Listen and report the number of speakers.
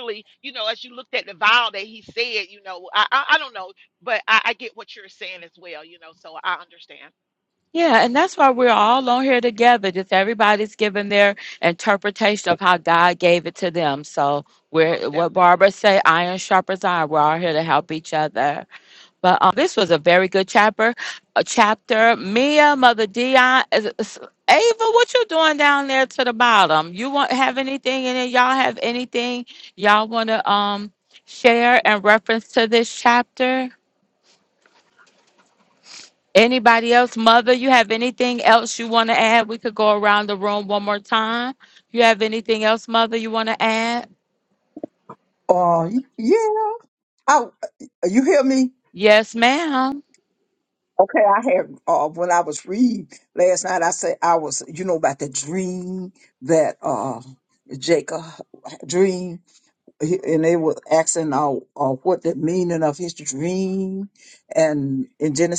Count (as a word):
three